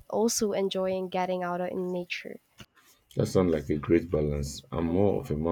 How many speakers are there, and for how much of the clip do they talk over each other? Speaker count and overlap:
2, about 11%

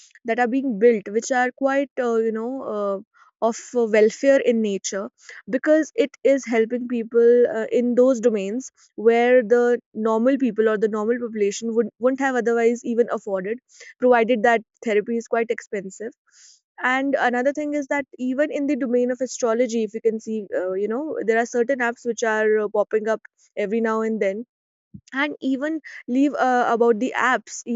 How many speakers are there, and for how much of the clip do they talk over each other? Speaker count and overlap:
1, no overlap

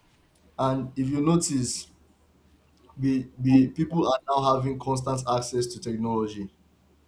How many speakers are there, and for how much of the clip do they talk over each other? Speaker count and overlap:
1, no overlap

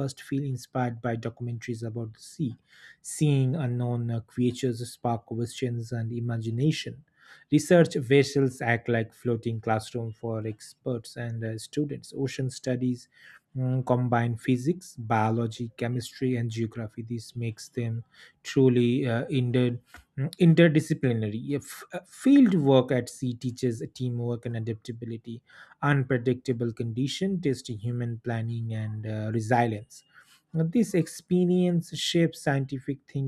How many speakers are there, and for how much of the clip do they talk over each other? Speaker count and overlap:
1, no overlap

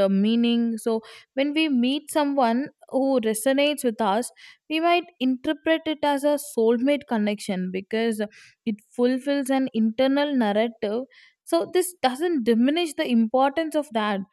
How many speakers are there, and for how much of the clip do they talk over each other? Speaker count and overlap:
1, no overlap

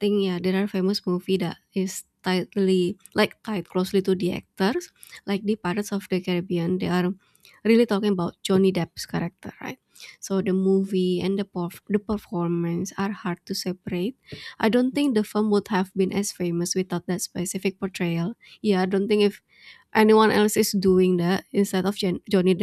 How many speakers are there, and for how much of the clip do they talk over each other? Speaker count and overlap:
1, no overlap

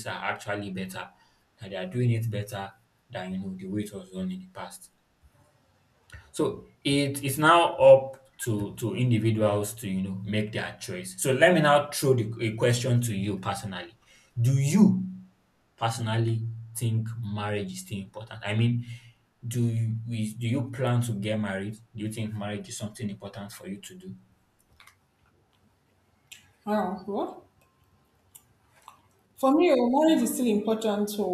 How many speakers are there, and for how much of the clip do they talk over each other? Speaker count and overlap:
2, no overlap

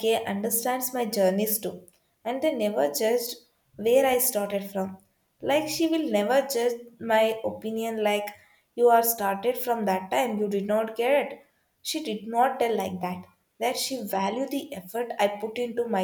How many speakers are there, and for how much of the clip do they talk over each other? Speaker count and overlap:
1, no overlap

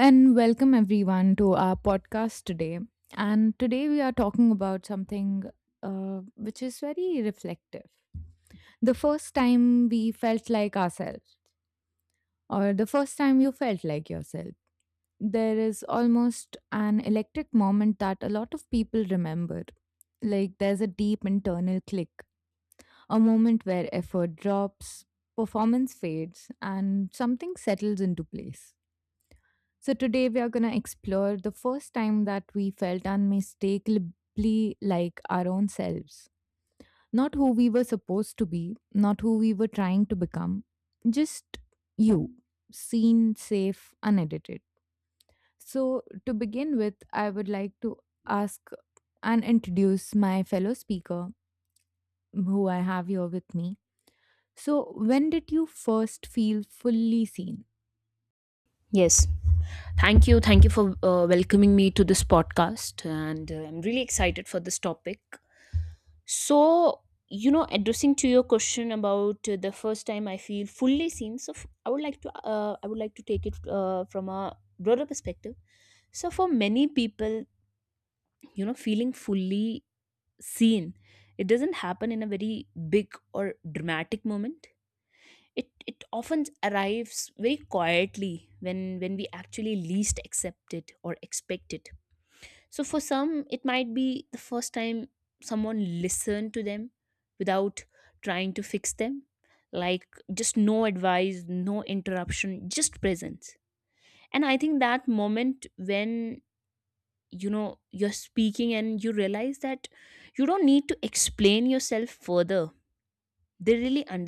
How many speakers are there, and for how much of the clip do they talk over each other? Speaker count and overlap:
2, no overlap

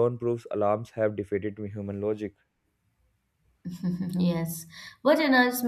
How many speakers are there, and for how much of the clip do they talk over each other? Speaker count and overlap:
2, no overlap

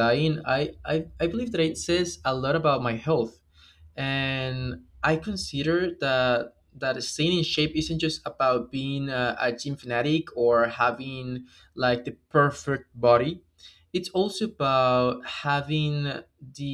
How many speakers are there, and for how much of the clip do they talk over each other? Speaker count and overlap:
1, no overlap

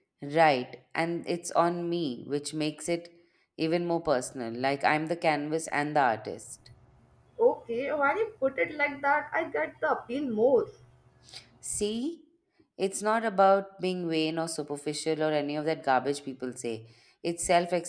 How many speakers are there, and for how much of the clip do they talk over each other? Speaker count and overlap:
2, no overlap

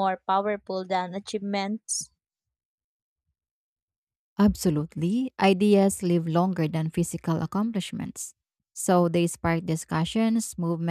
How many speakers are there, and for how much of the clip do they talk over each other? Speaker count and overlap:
2, no overlap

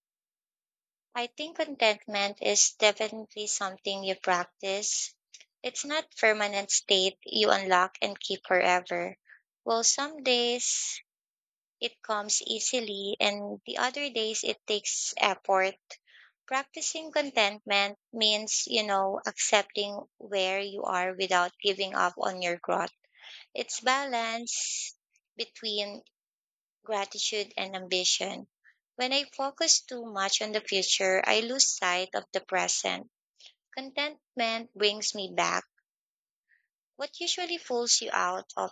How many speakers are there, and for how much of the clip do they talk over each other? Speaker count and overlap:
1, no overlap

